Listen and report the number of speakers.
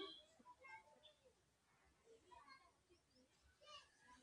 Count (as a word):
zero